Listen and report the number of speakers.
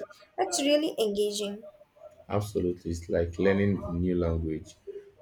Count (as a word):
two